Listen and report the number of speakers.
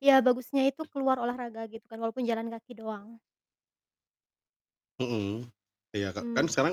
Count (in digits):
2